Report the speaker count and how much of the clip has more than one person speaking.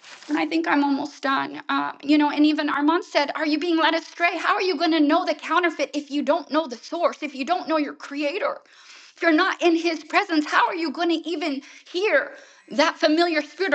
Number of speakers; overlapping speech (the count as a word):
one, no overlap